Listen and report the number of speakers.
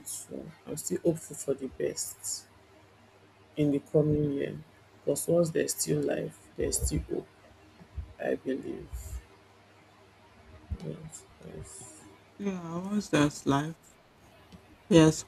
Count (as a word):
two